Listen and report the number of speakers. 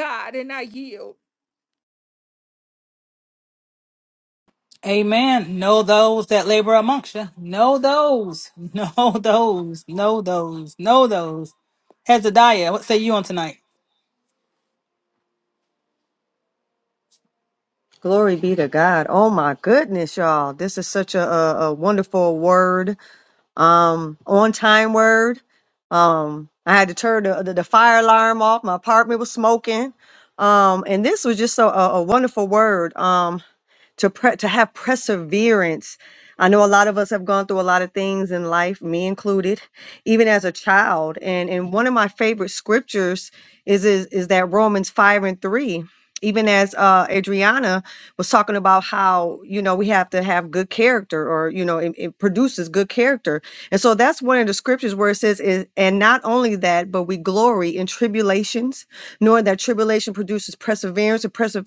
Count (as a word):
three